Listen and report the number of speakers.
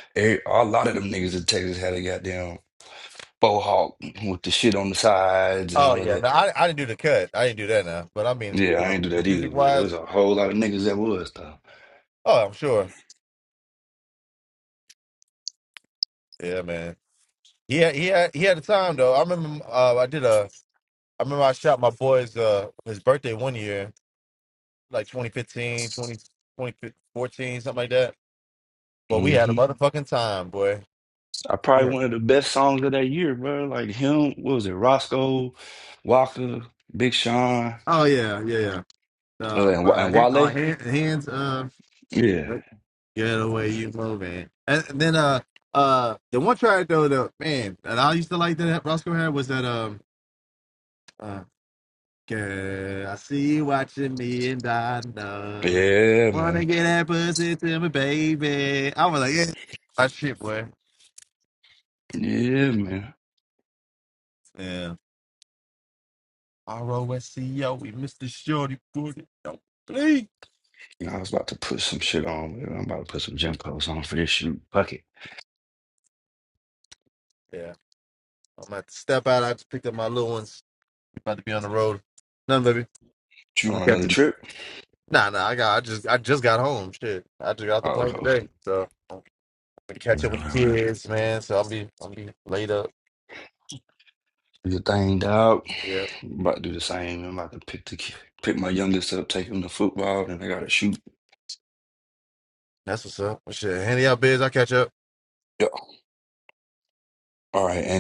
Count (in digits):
2